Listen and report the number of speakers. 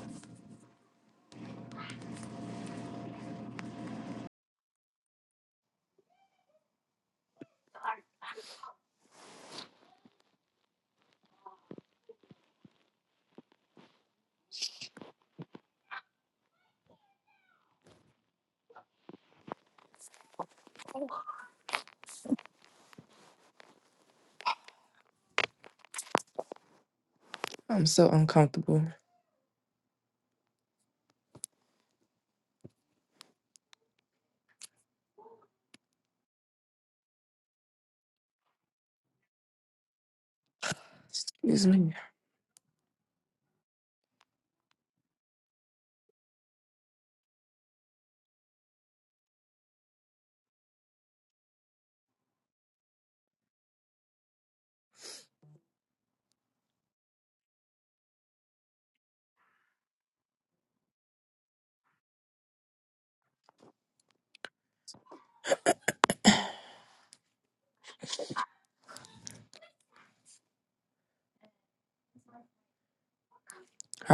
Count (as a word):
one